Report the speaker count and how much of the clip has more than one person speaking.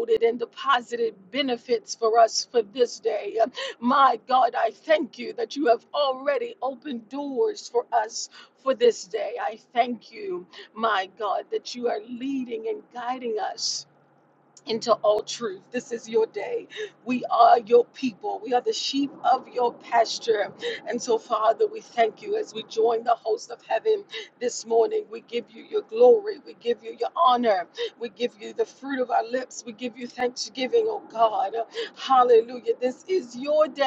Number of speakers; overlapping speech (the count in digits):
1, no overlap